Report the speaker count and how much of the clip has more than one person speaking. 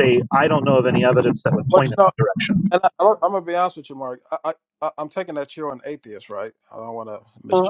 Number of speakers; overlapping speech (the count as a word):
two, about 7%